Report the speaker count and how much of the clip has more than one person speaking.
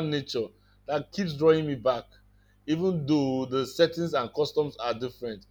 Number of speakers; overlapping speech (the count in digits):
1, no overlap